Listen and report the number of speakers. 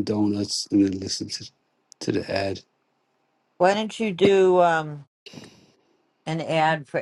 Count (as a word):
two